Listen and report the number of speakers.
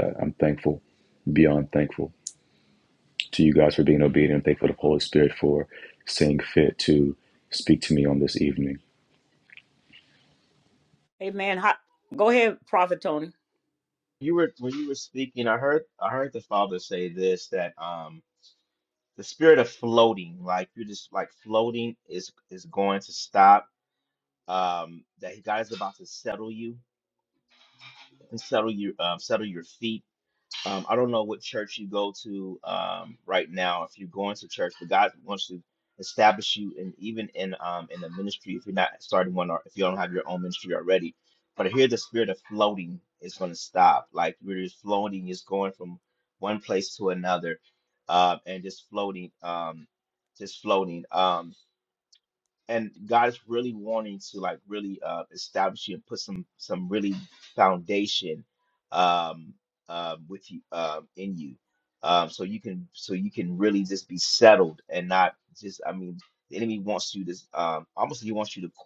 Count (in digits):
3